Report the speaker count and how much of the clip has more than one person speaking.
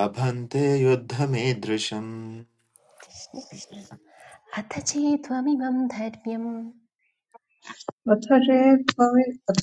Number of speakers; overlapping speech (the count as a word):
three, no overlap